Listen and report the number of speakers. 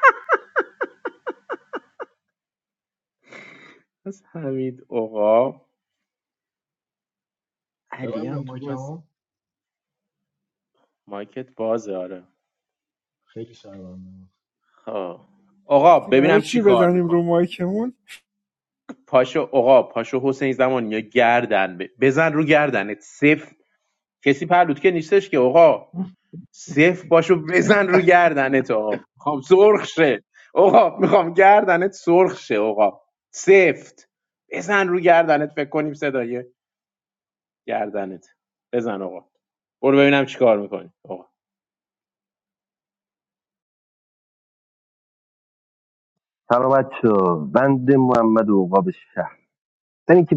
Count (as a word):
four